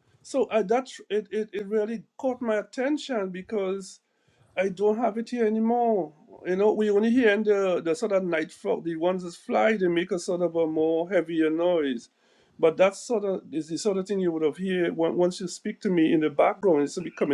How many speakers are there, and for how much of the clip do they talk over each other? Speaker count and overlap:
one, no overlap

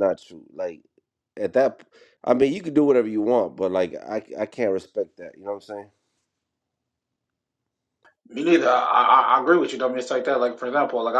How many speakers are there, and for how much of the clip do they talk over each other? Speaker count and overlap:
two, no overlap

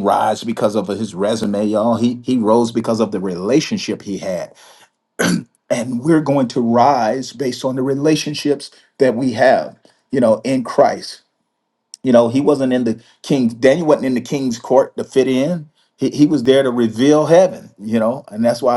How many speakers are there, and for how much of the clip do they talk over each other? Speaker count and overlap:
one, no overlap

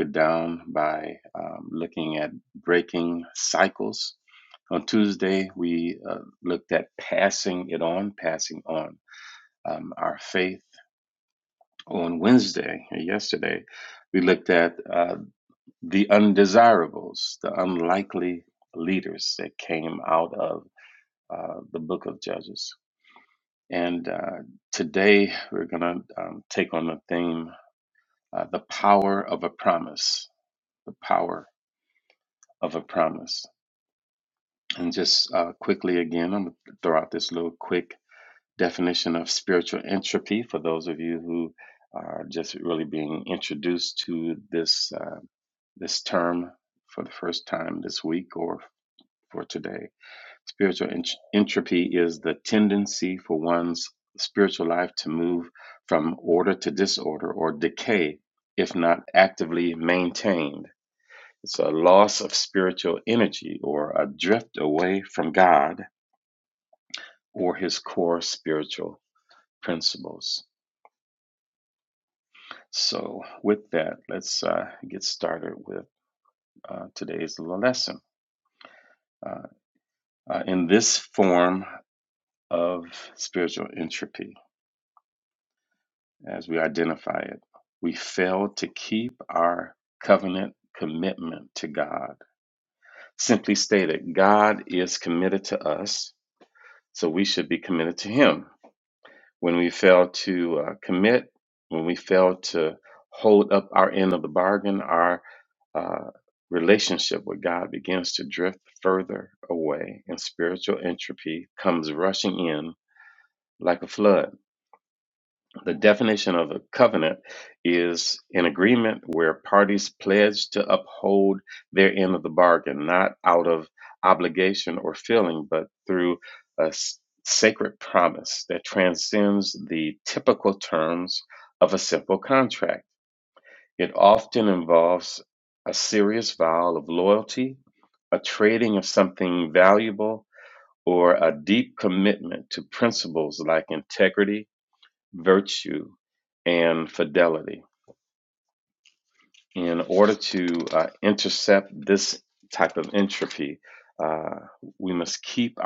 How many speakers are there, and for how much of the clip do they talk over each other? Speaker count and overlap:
one, no overlap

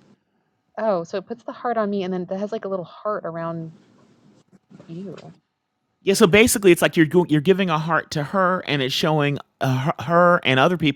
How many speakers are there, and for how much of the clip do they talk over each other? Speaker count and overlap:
two, about 3%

